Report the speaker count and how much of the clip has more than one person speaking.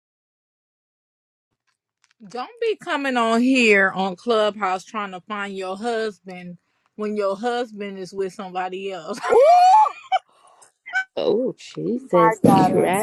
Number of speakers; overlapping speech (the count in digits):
3, about 8%